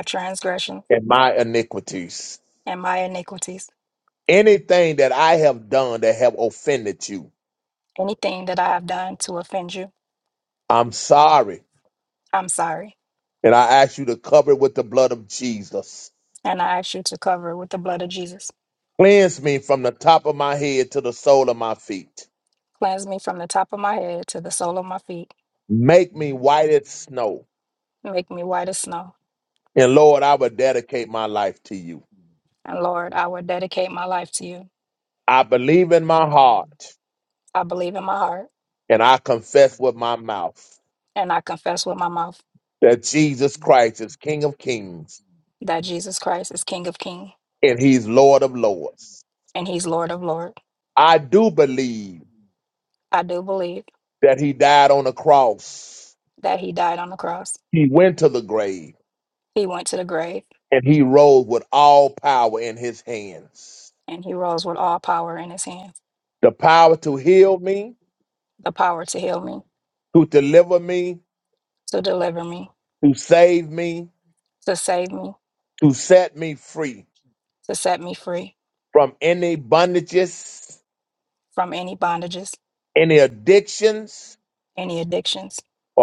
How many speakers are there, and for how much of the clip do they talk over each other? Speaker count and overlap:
2, no overlap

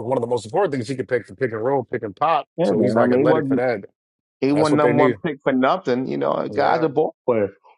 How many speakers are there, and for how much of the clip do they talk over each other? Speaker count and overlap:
2, about 27%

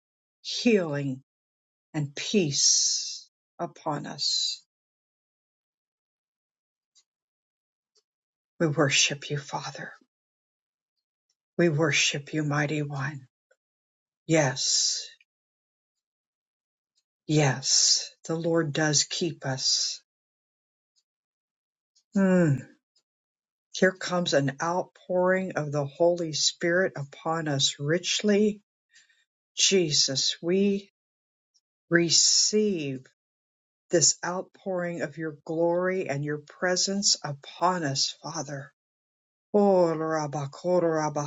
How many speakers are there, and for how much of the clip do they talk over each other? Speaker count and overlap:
1, no overlap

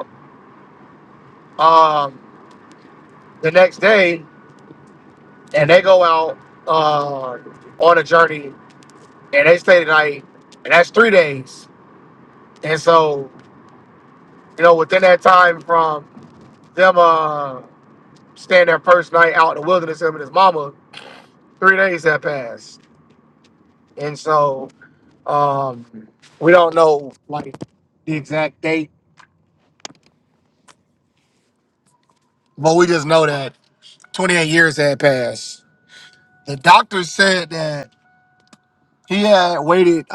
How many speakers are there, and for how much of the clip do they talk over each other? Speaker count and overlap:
1, no overlap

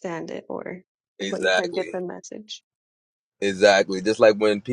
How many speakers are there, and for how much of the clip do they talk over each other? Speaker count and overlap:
2, about 17%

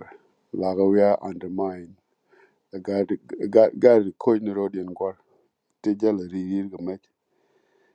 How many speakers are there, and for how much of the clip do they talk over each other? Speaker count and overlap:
1, no overlap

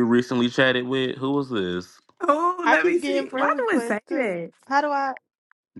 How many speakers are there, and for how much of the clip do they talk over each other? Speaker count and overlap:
3, about 29%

